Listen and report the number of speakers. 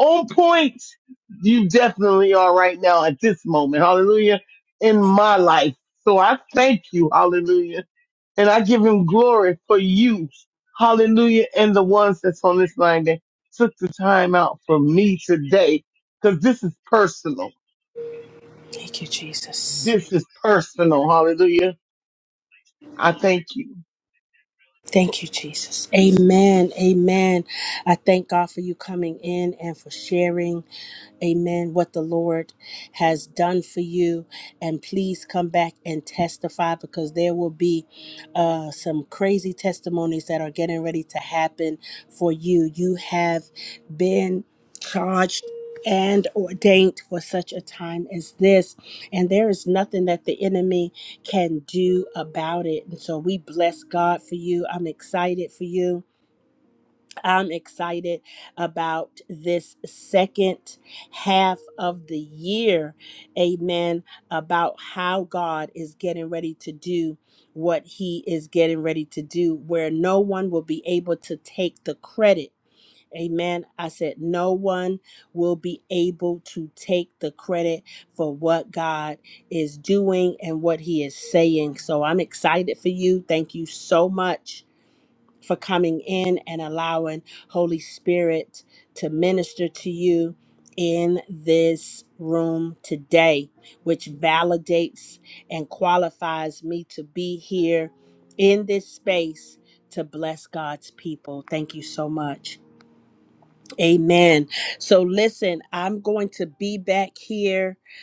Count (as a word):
two